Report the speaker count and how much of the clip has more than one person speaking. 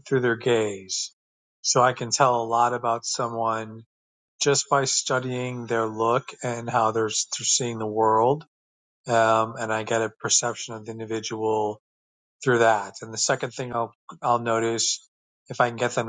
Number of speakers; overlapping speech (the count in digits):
1, no overlap